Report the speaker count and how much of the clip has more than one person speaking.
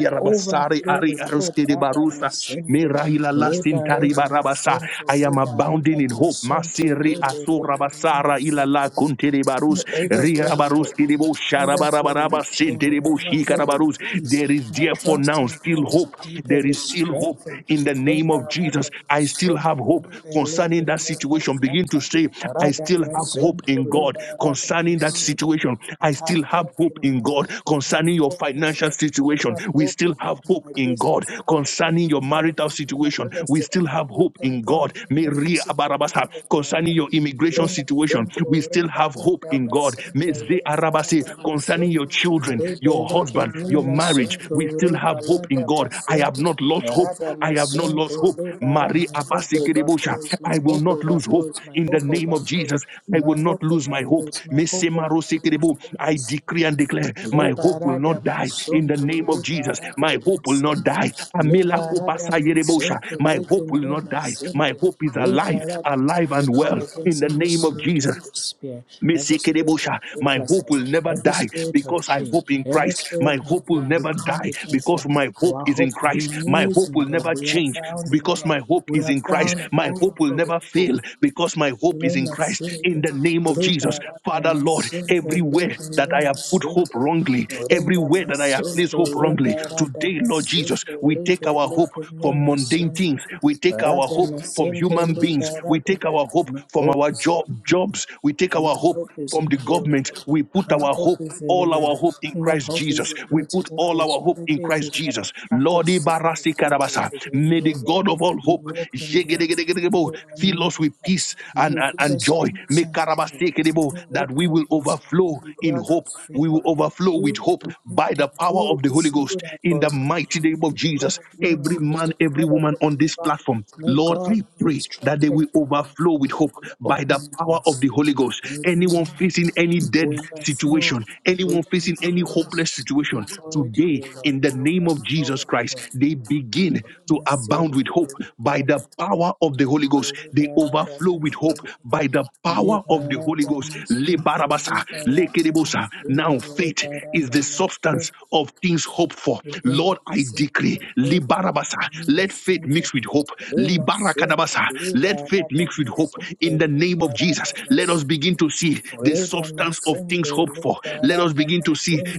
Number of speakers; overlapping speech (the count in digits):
2, about 78%